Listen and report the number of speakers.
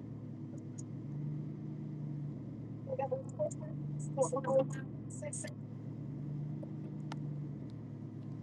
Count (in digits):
0